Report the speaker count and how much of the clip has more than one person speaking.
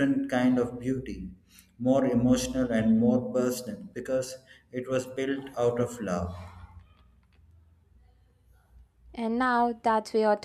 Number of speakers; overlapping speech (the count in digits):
2, no overlap